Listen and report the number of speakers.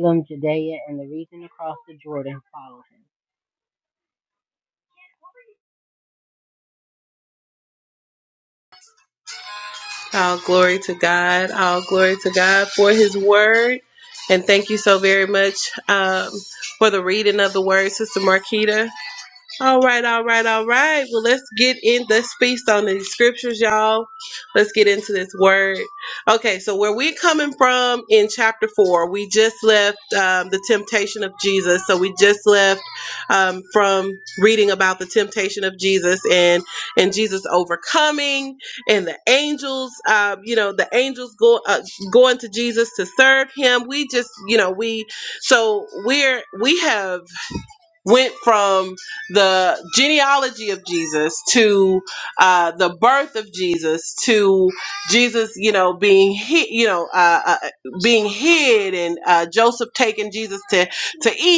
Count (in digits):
2